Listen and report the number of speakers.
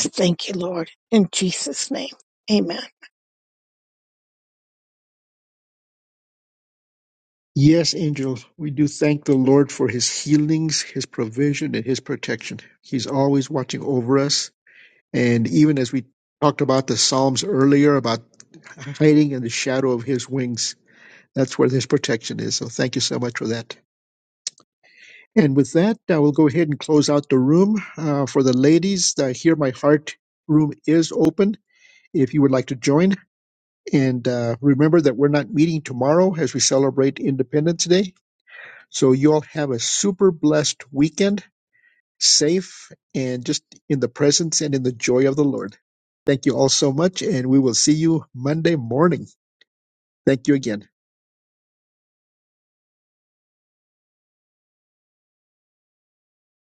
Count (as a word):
two